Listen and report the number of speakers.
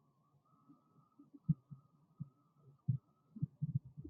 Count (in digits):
0